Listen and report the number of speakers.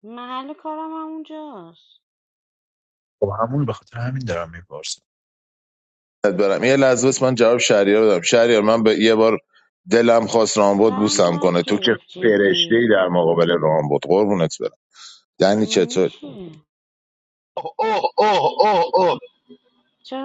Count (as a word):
four